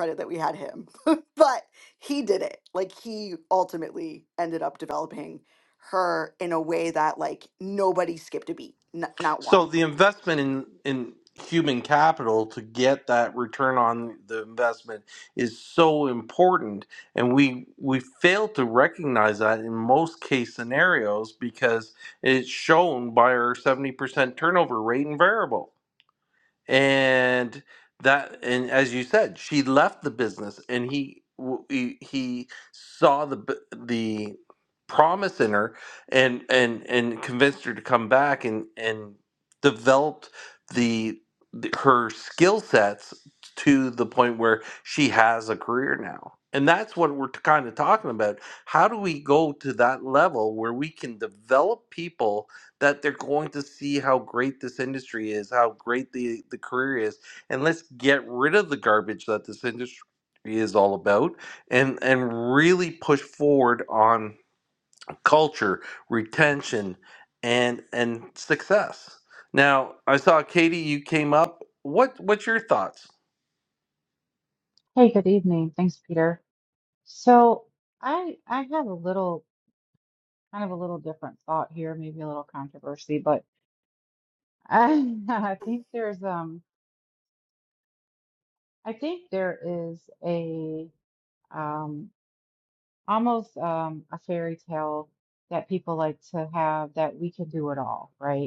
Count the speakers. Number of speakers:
three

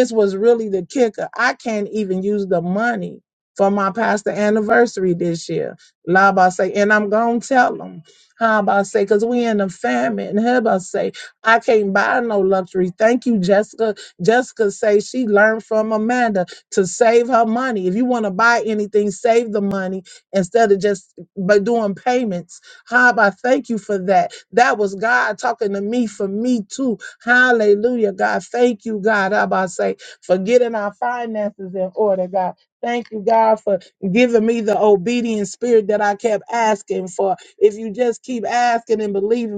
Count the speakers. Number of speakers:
one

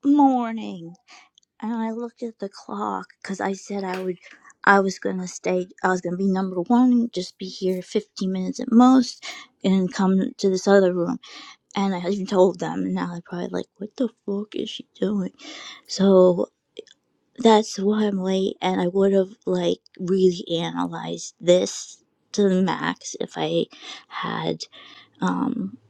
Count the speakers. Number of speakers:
one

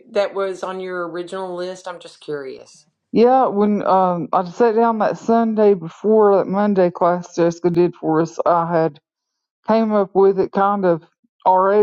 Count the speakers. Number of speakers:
two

